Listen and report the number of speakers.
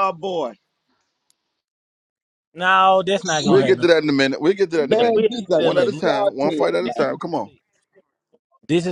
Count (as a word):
three